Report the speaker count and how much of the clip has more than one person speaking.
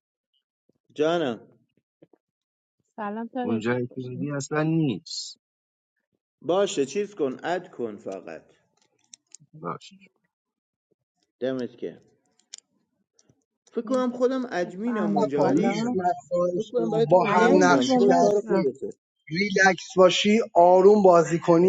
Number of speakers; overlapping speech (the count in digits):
4, about 21%